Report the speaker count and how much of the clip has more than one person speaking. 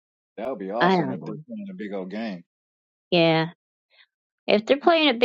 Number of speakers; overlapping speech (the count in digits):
2, about 10%